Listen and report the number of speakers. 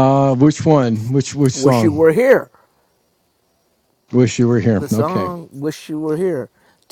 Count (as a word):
two